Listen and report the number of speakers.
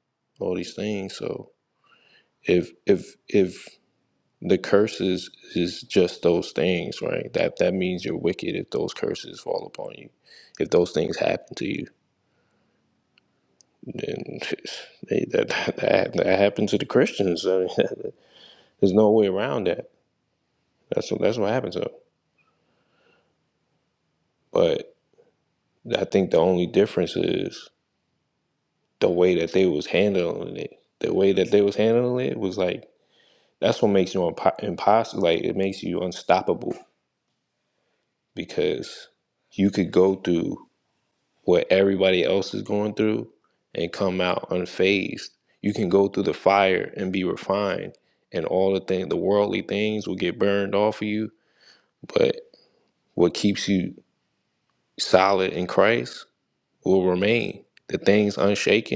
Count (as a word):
one